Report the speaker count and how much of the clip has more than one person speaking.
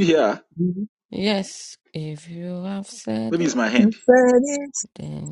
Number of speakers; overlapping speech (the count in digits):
3, about 9%